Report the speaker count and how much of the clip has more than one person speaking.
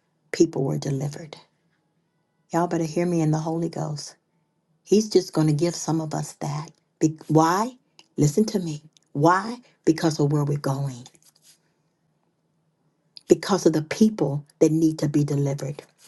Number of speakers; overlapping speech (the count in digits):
1, no overlap